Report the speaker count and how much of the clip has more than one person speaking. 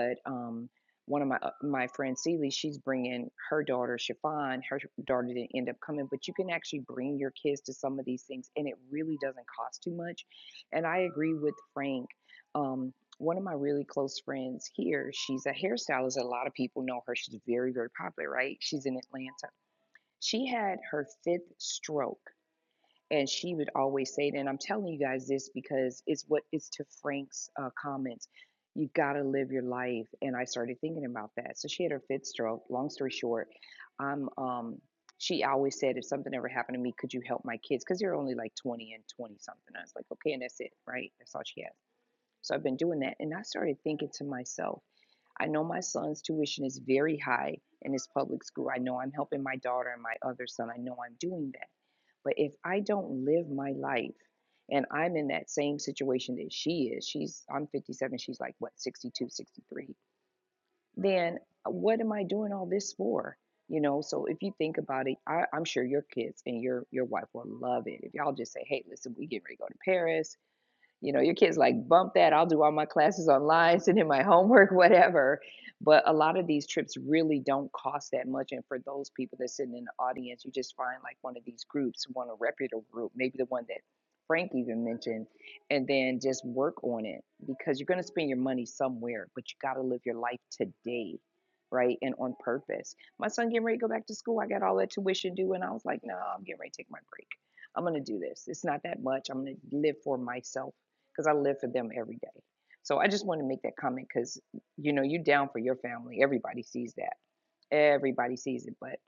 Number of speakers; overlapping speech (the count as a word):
one, no overlap